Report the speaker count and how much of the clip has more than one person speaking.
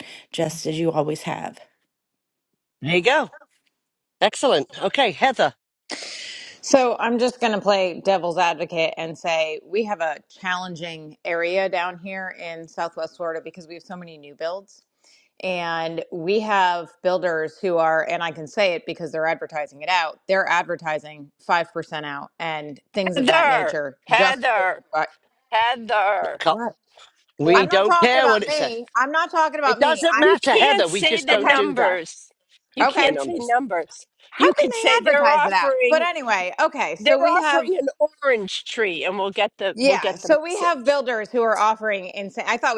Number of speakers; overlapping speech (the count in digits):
4, about 21%